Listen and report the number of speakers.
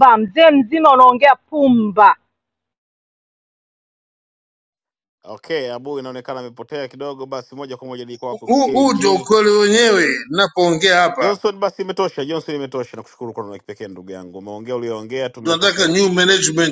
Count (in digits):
3